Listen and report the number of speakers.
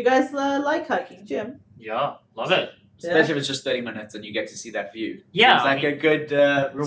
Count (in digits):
3